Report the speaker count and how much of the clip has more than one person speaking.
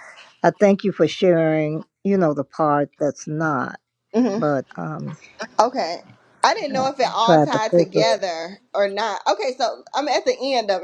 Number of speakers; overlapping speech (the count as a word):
two, about 9%